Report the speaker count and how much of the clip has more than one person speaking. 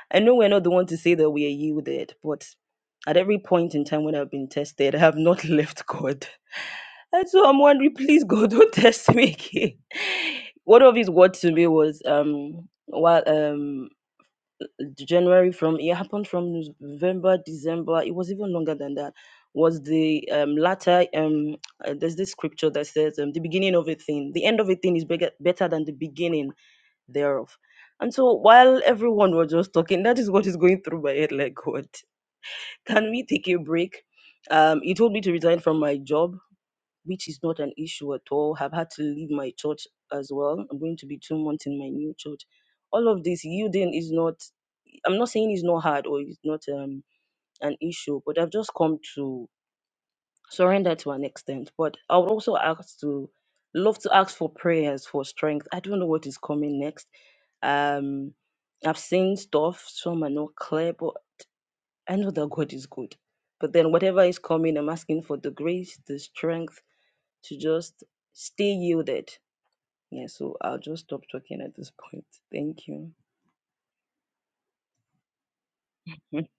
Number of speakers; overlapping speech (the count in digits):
1, no overlap